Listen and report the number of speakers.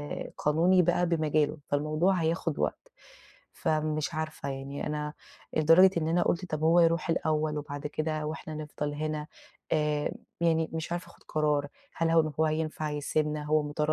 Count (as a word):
one